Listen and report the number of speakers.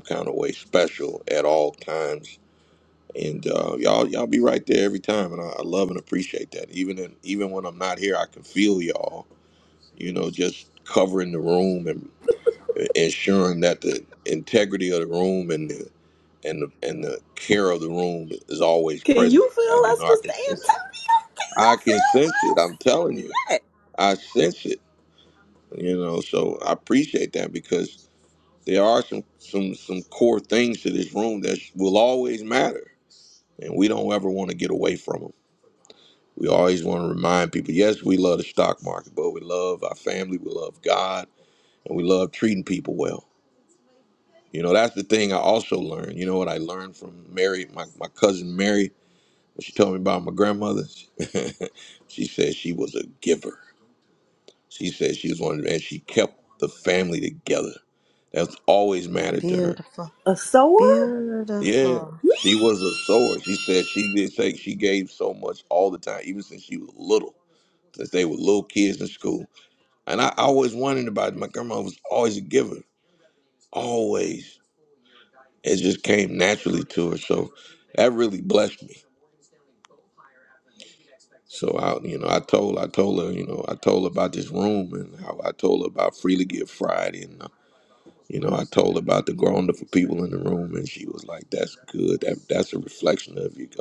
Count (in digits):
3